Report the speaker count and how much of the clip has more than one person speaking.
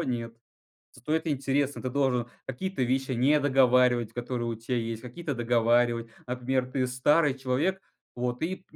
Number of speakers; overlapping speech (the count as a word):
one, no overlap